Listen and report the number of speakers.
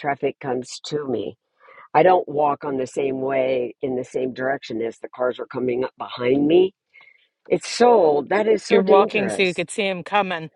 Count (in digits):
2